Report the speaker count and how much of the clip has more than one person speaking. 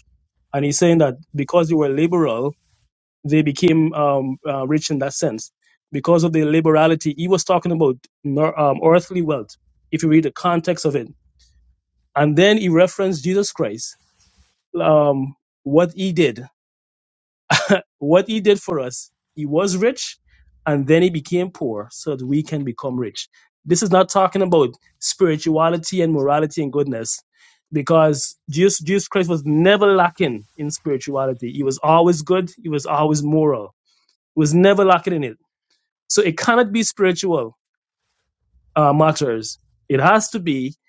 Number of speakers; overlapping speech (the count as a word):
one, no overlap